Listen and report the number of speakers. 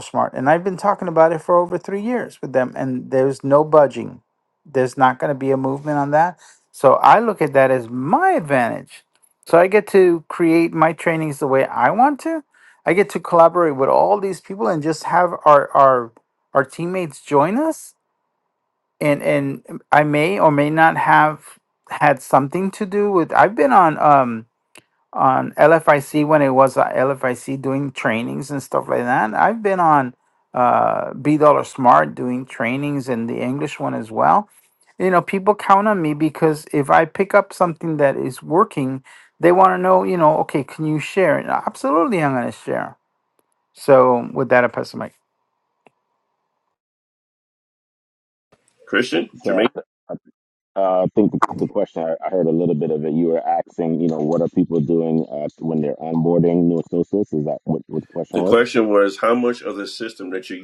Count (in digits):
3